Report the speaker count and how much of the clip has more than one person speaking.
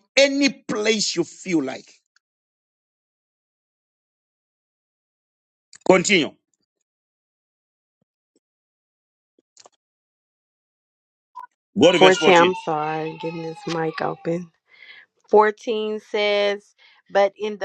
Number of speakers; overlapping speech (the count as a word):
two, about 3%